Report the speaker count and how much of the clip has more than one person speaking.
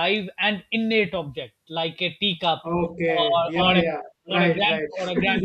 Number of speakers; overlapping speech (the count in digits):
2, about 26%